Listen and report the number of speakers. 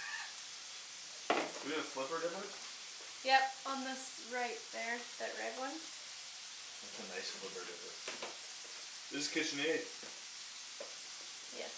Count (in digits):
2